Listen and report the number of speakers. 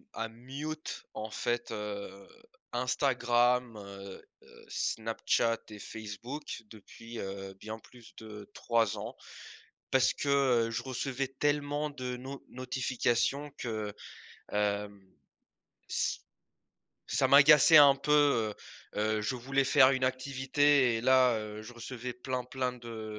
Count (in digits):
1